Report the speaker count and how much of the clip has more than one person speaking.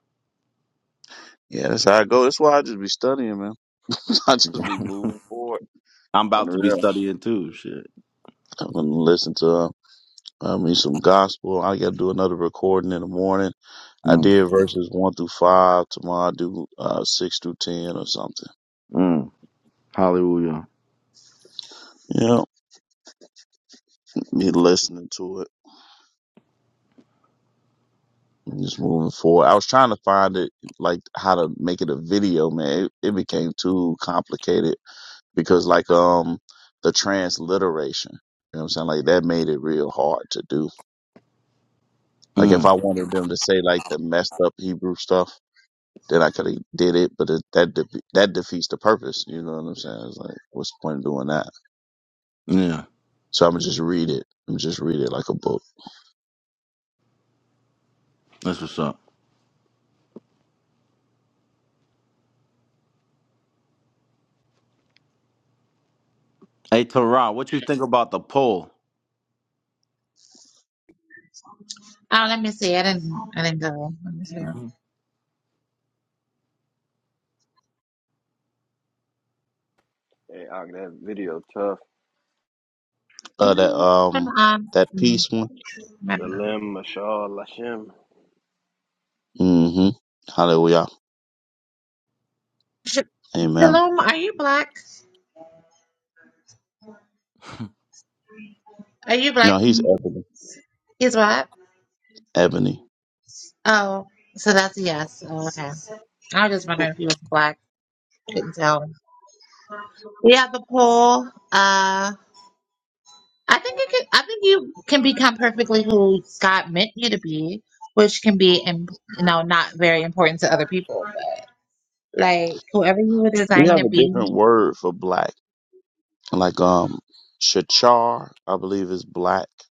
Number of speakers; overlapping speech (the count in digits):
4, about 2%